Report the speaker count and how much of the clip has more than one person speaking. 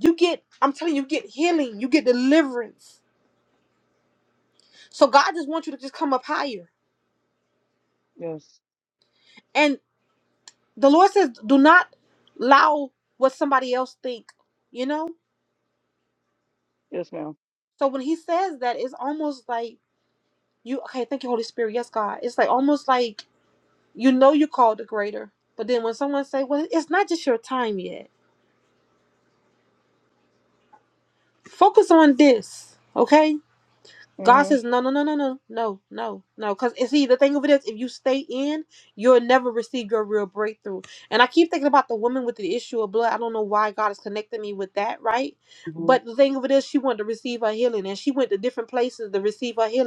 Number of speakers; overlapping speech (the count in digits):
2, about 1%